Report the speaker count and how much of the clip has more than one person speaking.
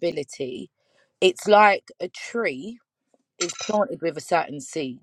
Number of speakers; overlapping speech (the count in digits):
1, no overlap